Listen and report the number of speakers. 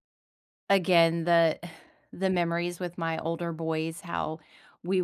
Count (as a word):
one